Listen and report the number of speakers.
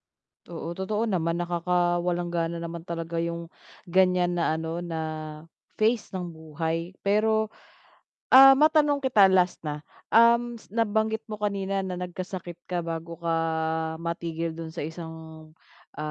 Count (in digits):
1